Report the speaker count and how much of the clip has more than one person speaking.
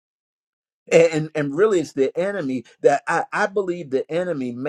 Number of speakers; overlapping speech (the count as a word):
one, no overlap